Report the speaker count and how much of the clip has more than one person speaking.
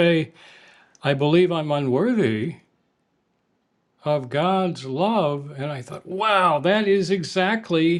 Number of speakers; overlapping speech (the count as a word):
one, no overlap